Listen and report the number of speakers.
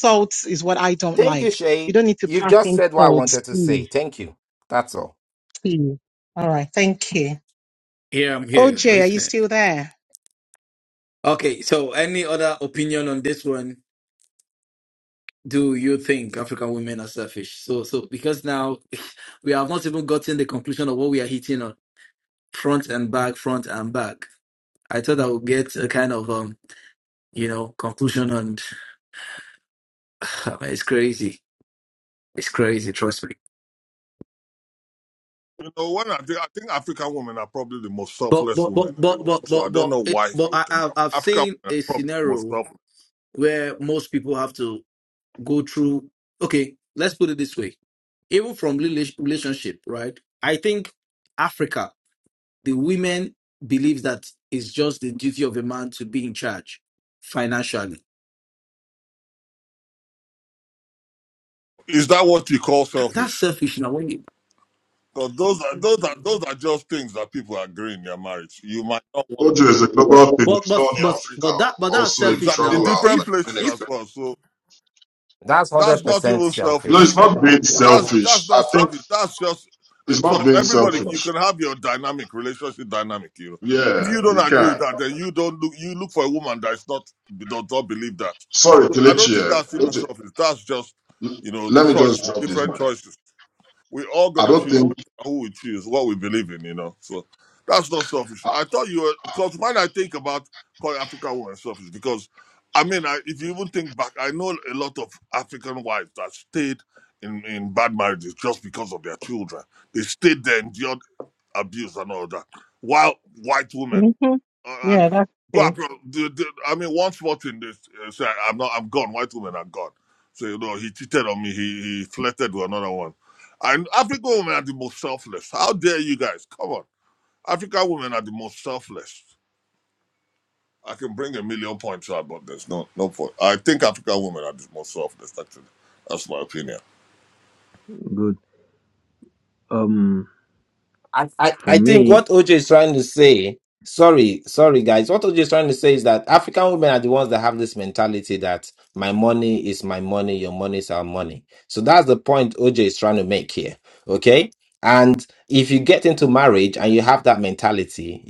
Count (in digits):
6